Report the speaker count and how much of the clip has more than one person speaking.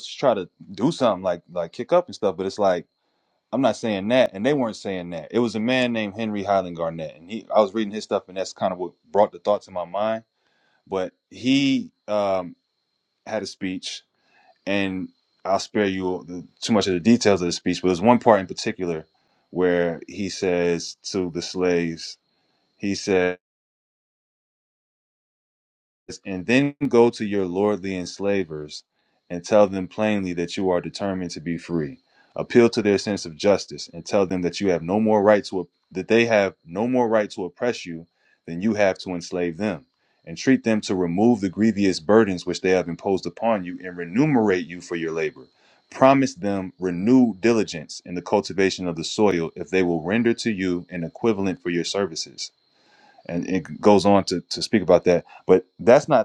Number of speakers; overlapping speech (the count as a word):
one, no overlap